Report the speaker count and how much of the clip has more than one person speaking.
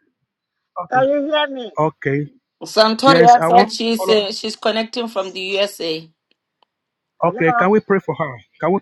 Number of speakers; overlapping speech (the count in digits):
3, about 20%